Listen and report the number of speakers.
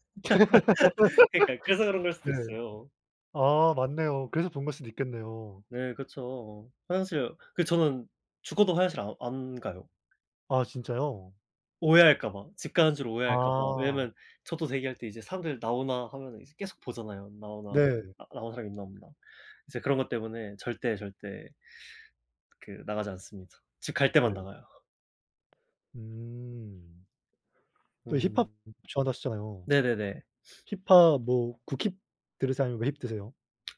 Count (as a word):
two